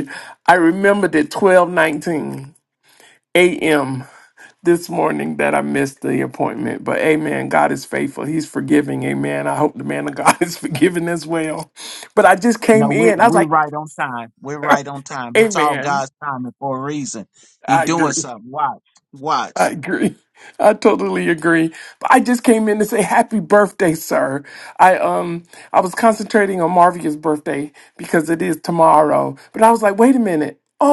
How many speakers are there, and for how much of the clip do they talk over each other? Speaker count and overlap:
two, about 7%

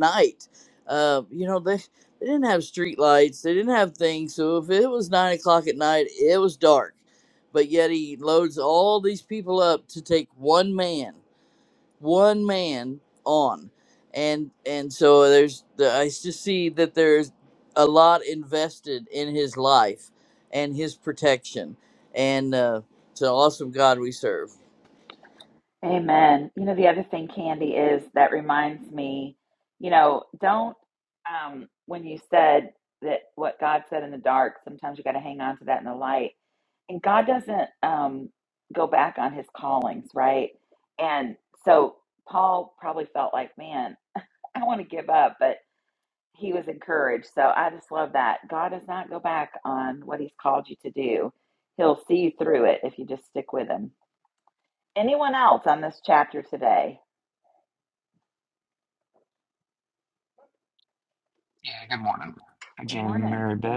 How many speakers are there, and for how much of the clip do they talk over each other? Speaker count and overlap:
three, about 1%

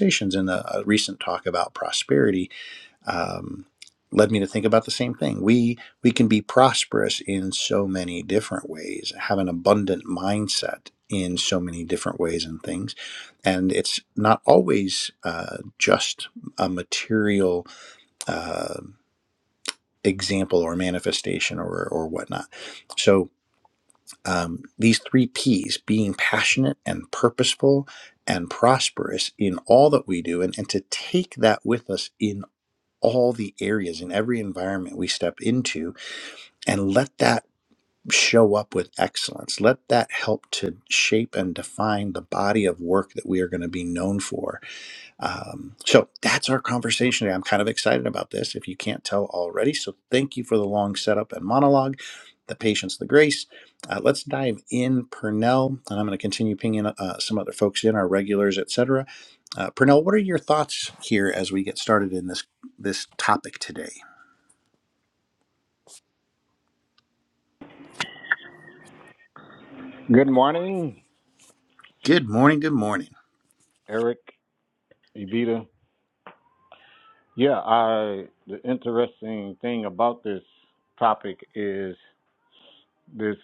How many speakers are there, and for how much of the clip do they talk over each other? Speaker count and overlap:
two, no overlap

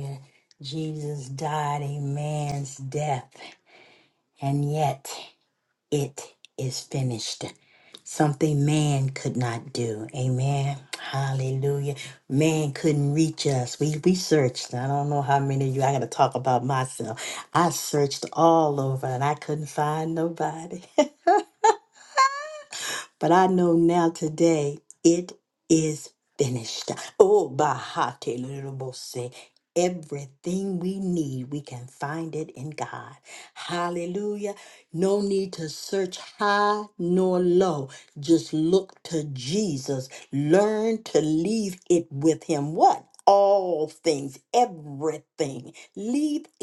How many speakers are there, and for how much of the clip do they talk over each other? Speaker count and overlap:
one, no overlap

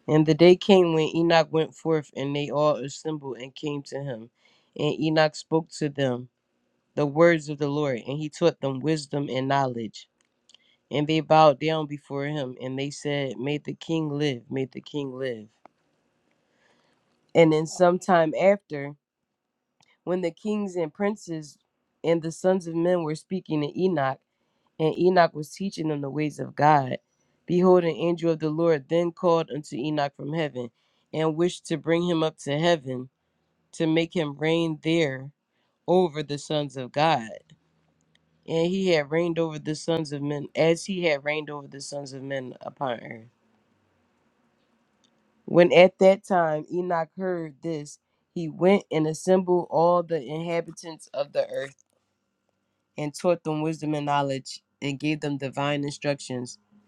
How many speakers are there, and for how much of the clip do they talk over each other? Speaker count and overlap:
one, no overlap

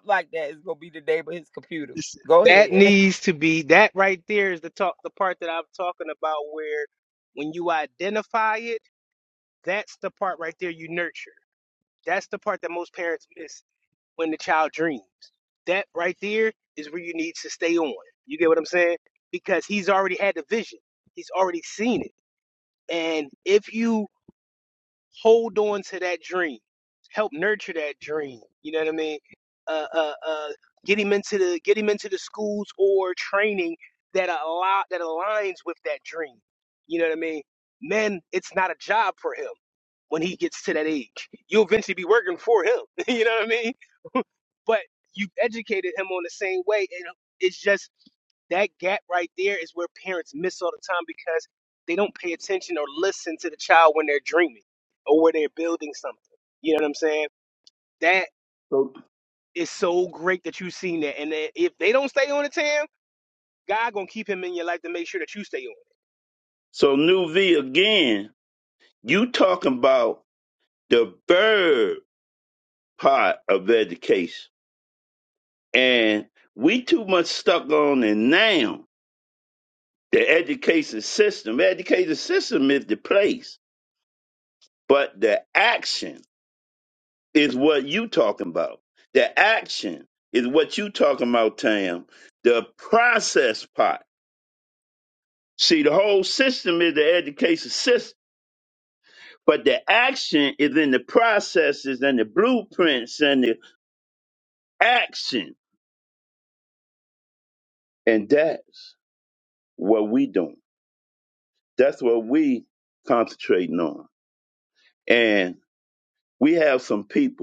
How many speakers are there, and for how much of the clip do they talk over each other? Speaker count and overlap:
three, under 1%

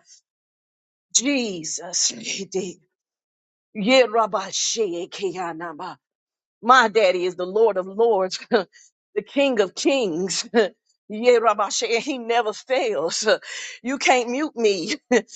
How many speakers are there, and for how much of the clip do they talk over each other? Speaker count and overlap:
one, no overlap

